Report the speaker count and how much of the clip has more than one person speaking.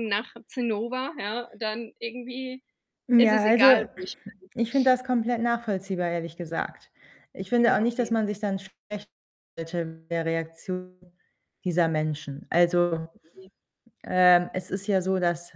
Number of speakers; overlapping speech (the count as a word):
two, about 9%